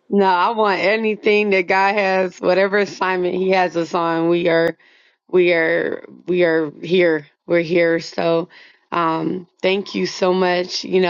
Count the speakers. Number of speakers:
1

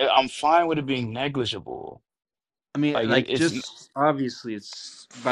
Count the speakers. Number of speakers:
2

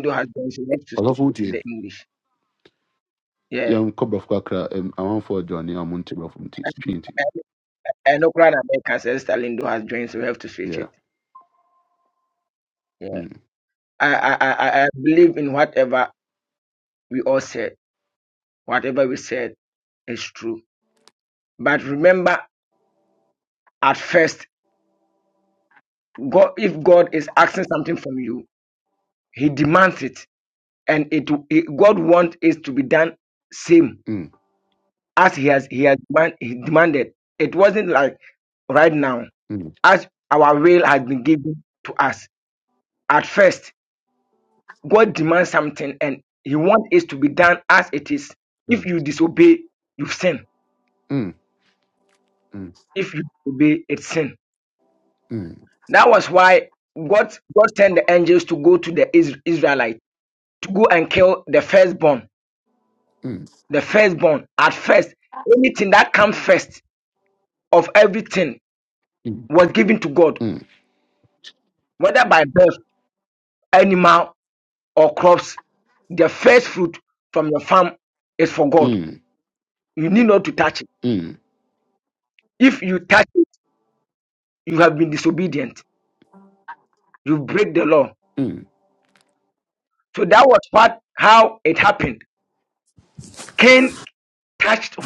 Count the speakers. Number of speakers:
2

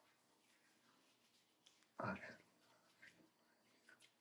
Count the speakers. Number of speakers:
0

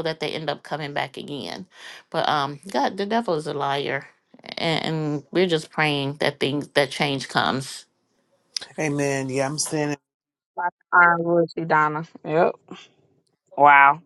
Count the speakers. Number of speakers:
3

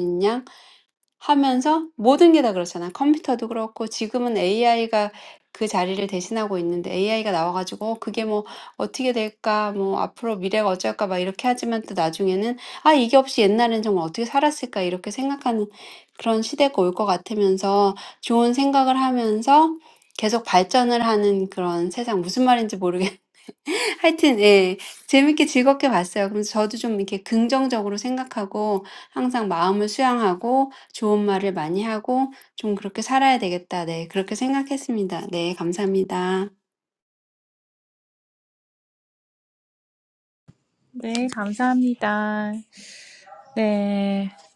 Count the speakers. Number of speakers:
2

